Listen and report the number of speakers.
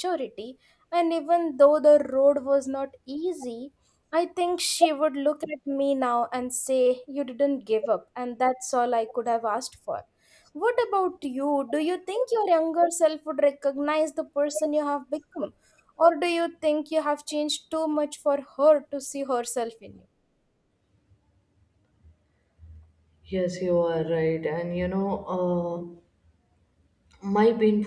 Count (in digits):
2